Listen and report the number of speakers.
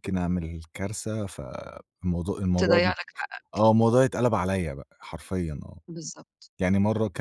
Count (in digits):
2